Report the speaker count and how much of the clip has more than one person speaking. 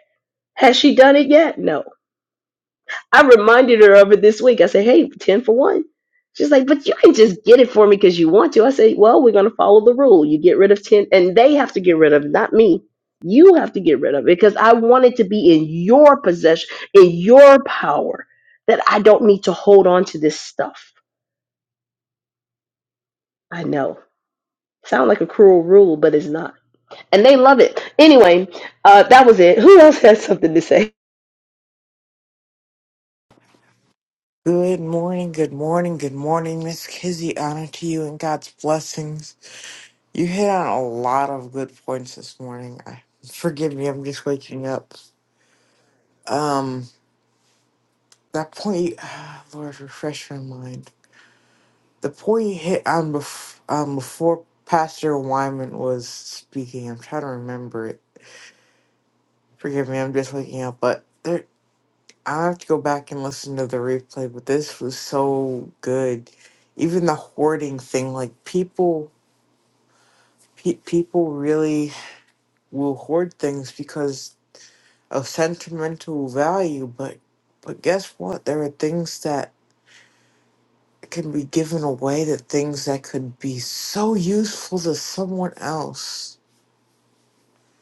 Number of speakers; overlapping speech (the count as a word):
two, no overlap